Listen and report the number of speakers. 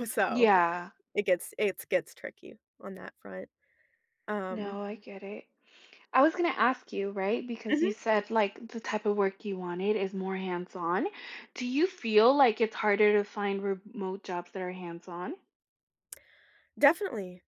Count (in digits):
2